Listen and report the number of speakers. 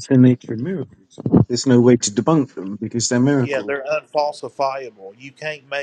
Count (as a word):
two